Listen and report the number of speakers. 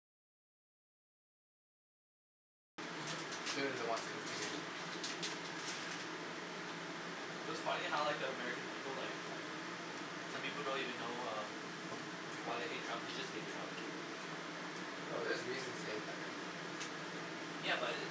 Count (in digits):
2